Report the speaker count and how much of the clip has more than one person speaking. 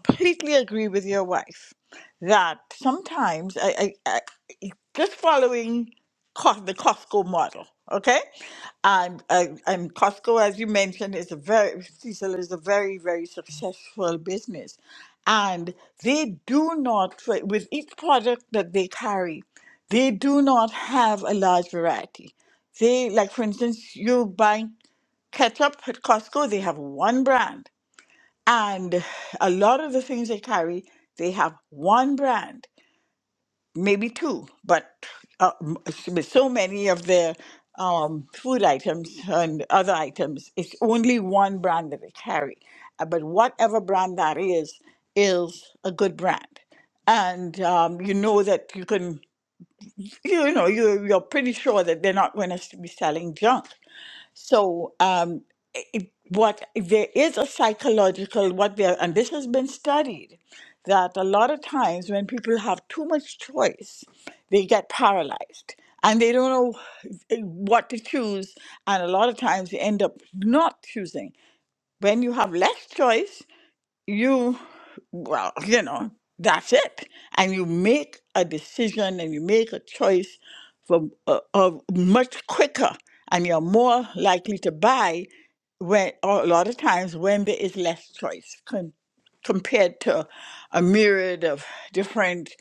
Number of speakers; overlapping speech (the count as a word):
one, no overlap